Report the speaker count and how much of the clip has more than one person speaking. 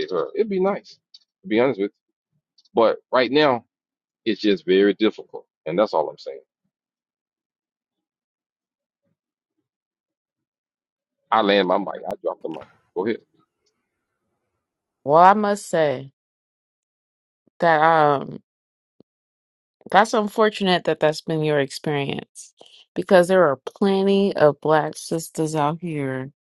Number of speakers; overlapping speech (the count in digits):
2, no overlap